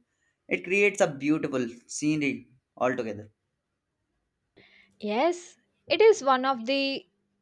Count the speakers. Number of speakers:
2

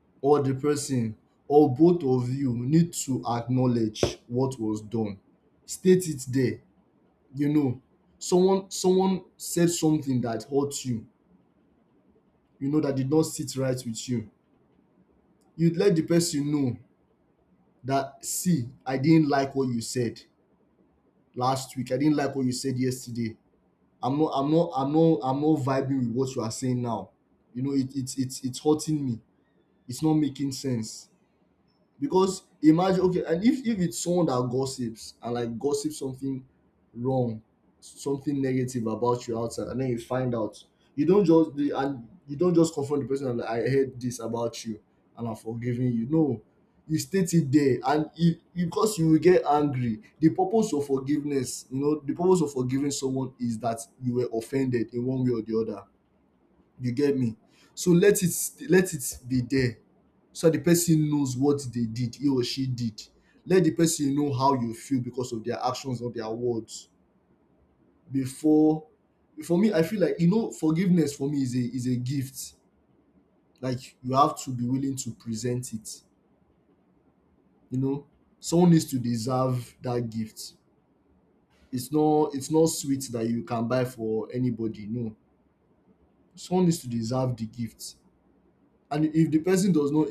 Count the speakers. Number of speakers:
1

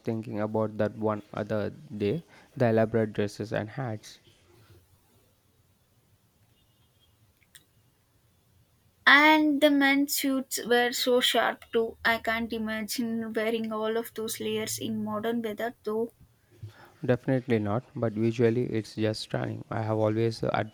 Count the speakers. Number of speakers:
2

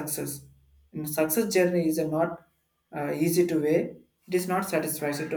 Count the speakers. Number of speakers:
1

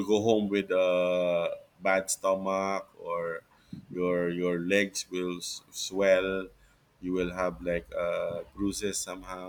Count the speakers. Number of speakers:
1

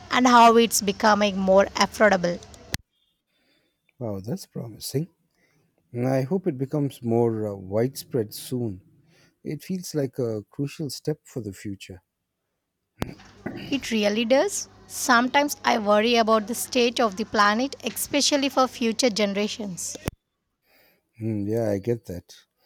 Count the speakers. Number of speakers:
2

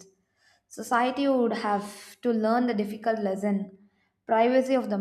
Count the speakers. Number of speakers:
1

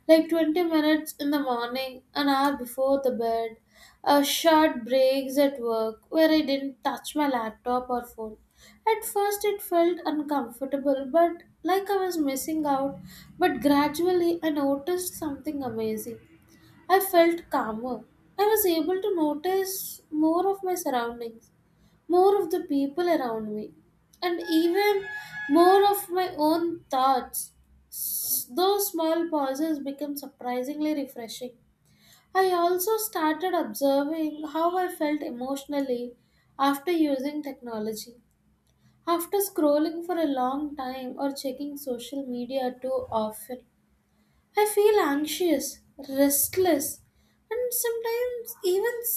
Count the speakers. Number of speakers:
1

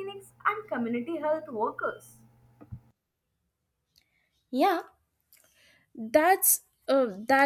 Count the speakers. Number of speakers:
2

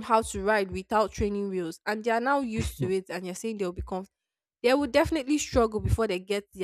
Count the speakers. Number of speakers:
1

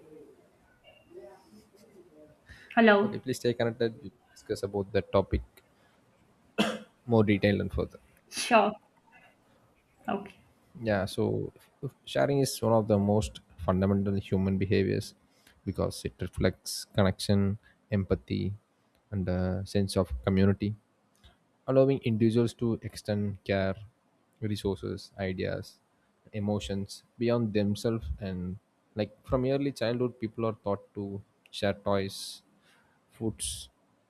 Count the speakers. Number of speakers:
2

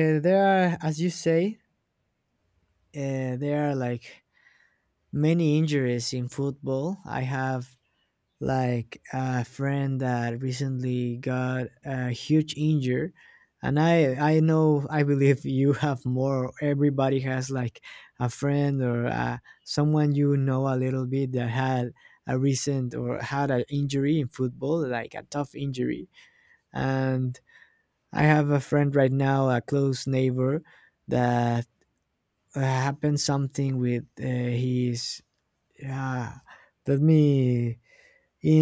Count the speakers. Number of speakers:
1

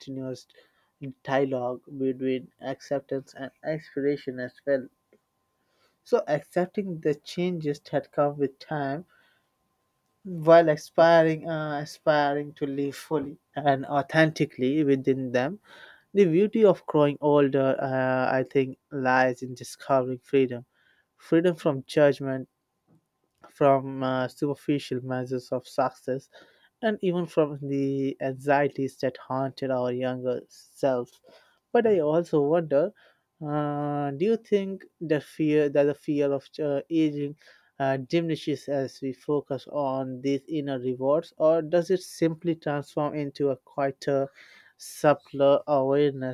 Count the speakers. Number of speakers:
1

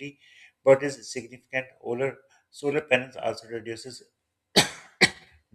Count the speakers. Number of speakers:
1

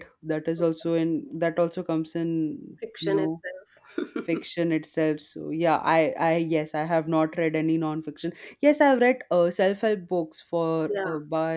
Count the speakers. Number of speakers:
2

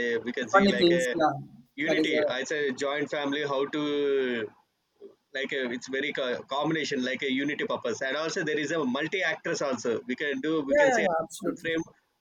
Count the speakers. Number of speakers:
2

